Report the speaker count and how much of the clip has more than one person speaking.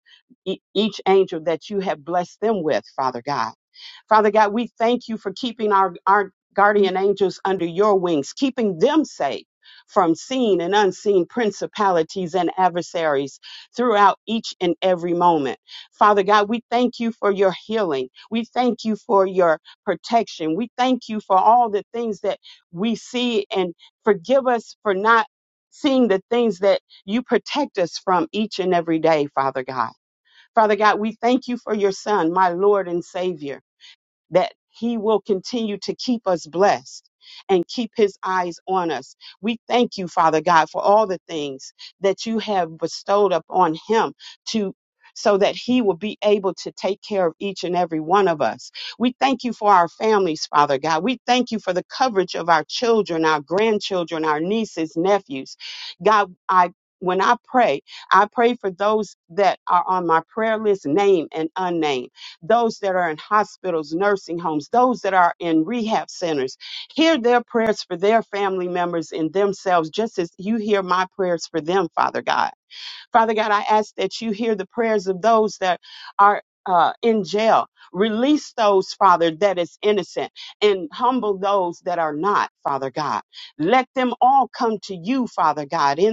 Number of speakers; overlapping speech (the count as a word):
one, no overlap